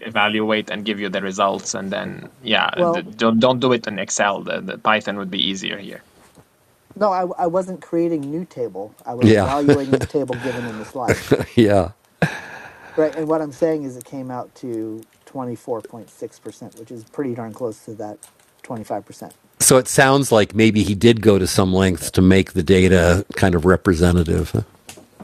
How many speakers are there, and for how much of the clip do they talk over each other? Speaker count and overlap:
three, about 2%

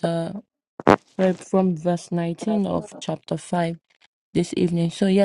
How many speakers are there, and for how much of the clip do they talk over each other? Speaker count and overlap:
one, no overlap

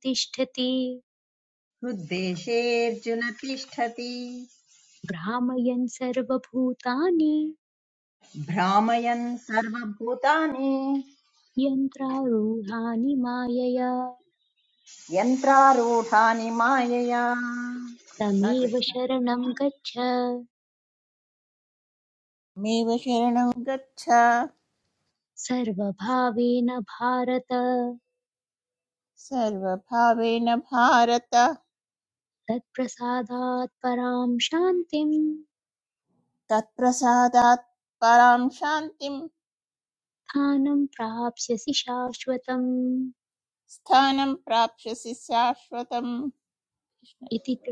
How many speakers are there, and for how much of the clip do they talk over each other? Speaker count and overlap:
three, about 1%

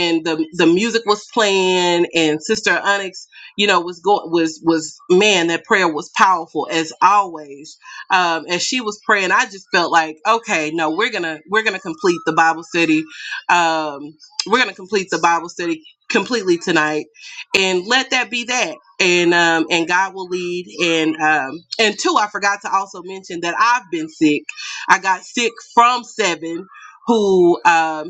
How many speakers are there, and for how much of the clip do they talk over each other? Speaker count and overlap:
one, no overlap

